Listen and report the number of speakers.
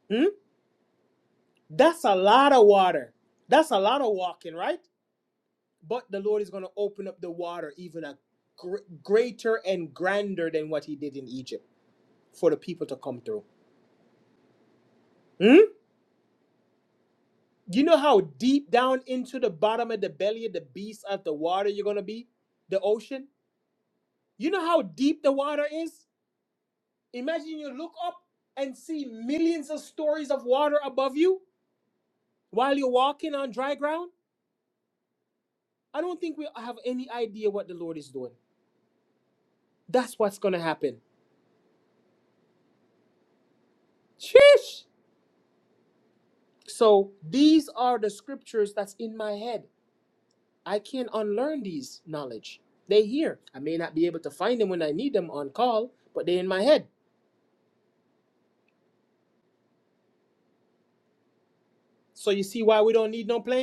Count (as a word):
one